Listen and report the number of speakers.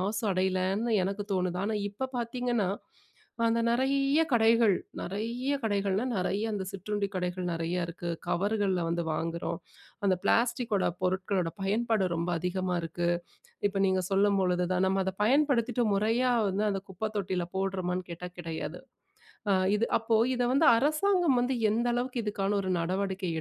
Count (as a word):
one